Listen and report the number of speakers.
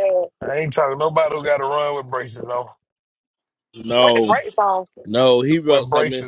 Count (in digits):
3